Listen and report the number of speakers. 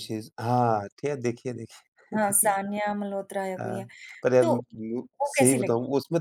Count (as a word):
two